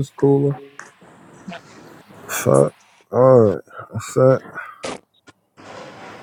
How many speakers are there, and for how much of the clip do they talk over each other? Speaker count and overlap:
one, no overlap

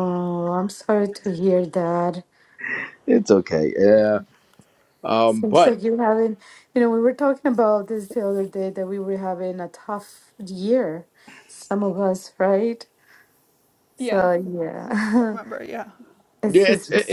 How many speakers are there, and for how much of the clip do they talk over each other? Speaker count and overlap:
three, about 7%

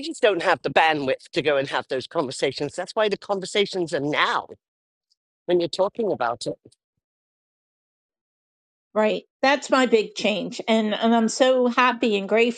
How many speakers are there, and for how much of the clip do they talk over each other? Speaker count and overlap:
two, no overlap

